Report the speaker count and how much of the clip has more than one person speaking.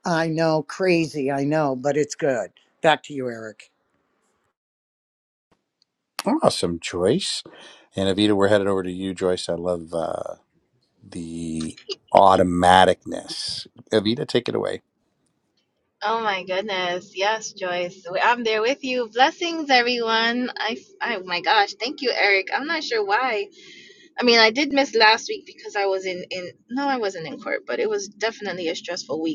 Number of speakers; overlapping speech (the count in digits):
3, no overlap